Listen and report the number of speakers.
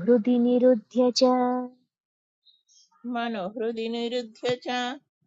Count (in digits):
2